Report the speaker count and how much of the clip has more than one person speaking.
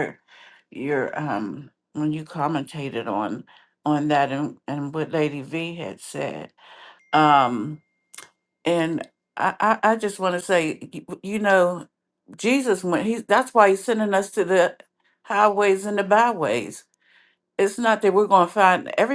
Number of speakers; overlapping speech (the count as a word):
one, no overlap